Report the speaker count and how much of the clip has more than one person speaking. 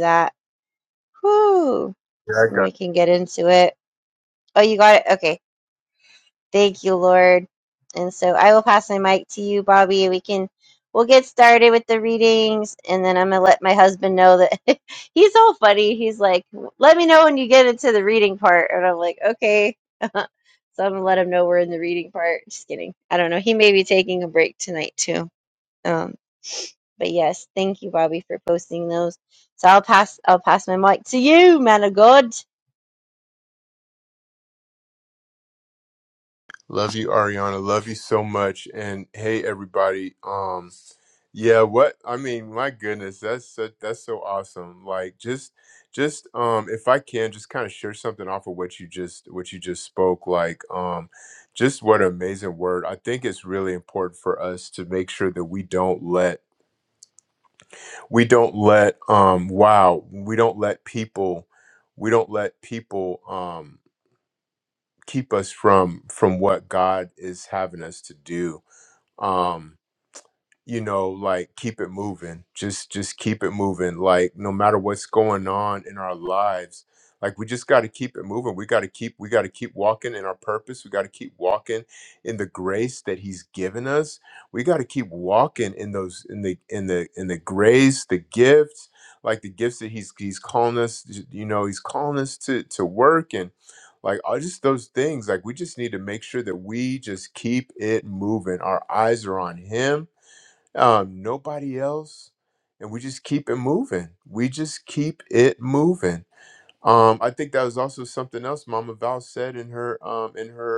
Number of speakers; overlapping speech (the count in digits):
2, under 1%